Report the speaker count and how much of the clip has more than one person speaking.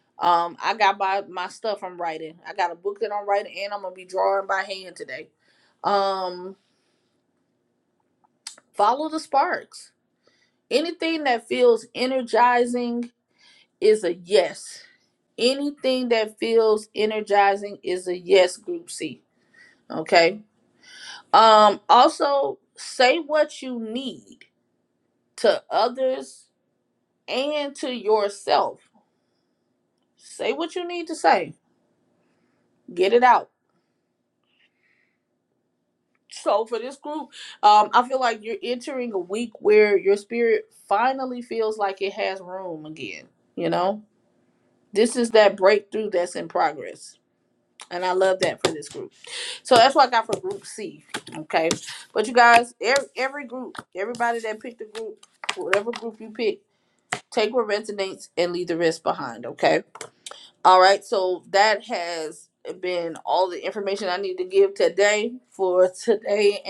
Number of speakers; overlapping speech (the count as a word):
one, no overlap